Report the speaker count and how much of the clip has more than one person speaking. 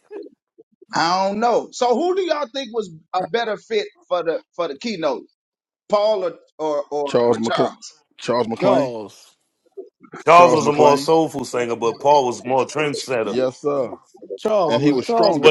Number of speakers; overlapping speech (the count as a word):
four, about 17%